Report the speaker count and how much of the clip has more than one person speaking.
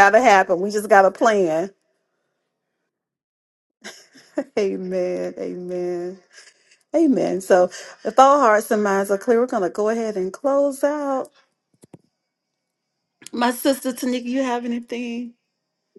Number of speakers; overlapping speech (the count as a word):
one, no overlap